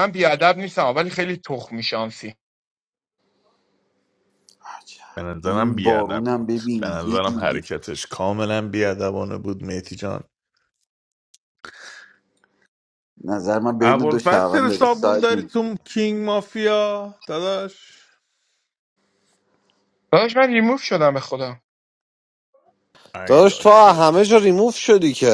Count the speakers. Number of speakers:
four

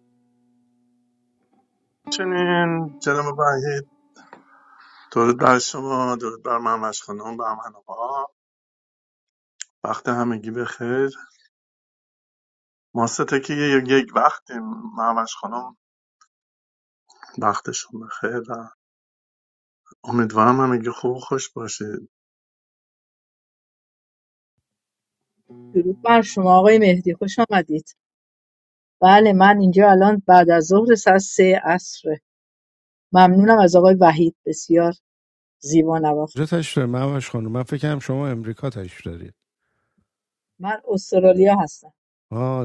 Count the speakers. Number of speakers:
three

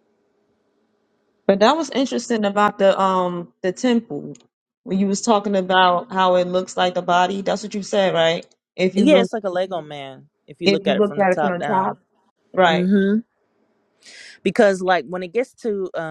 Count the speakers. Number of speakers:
two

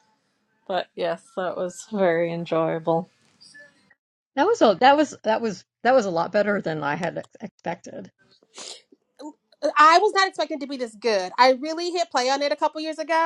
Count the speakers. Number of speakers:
three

